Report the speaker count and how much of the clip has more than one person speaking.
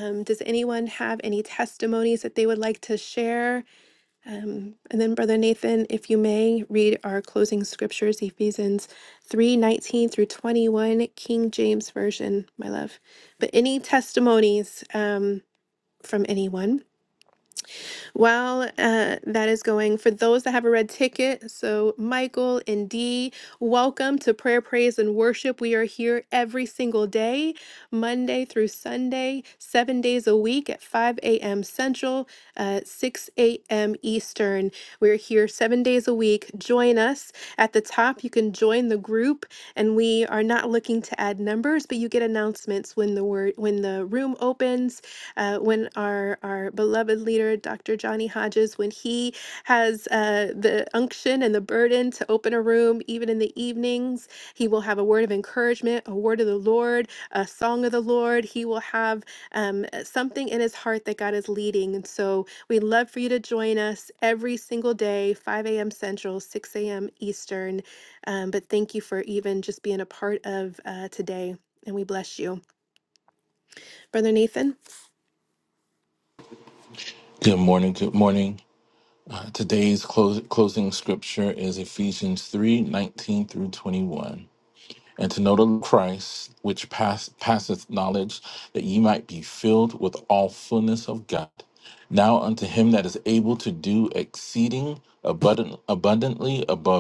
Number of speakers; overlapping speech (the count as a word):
two, no overlap